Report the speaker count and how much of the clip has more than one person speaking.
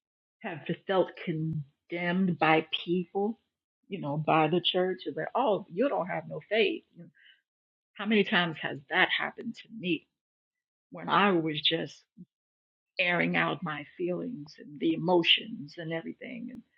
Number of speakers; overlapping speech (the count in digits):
1, no overlap